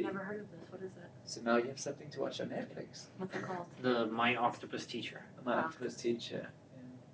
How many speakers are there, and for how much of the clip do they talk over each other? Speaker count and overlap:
3, about 22%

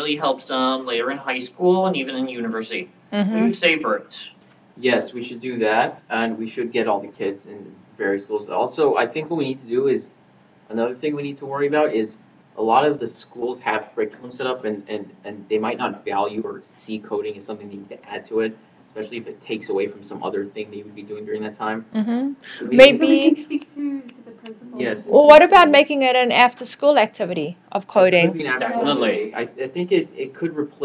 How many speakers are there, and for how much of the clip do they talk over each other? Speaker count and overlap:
4, about 11%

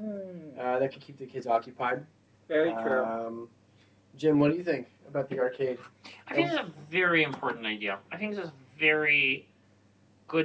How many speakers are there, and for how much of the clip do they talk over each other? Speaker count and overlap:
3, about 4%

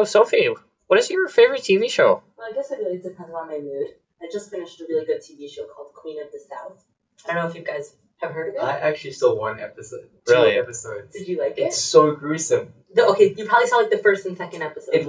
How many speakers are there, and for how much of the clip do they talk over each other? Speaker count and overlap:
3, about 5%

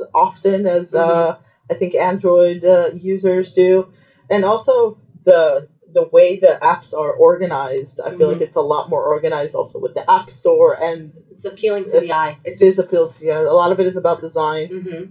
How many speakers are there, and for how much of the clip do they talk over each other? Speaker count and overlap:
2, about 4%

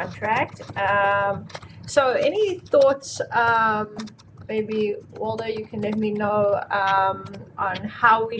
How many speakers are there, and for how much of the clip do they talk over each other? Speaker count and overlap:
1, no overlap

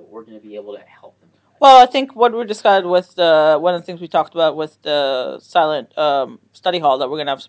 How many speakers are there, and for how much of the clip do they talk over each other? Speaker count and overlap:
2, about 1%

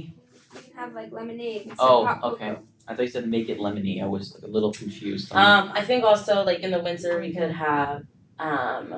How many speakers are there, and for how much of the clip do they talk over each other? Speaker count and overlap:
3, about 12%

